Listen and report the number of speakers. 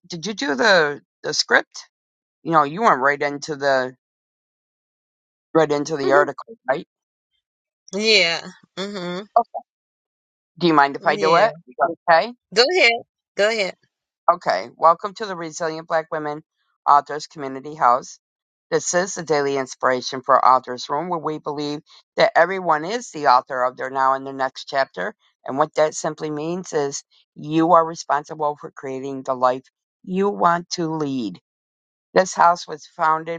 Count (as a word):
two